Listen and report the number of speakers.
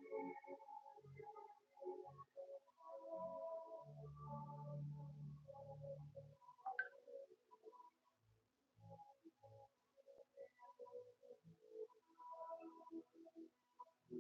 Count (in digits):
0